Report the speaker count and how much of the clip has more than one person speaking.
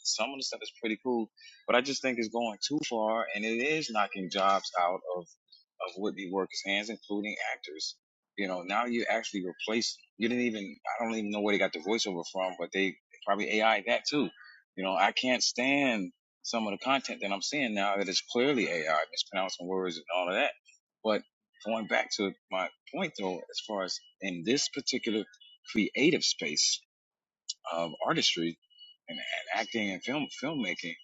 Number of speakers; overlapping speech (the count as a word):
one, no overlap